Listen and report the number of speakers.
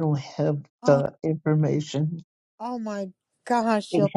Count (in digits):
2